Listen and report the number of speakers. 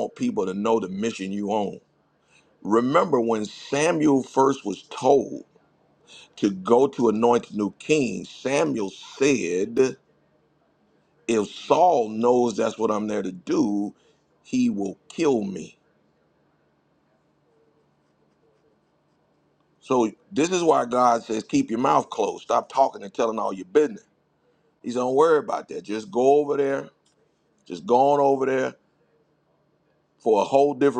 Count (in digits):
1